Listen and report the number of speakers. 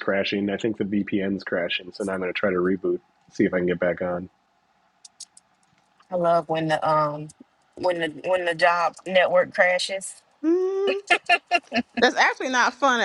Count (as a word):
three